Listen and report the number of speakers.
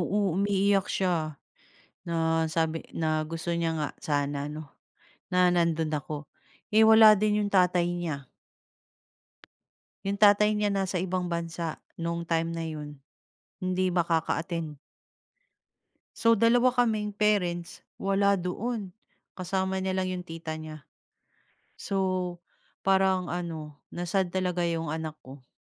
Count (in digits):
1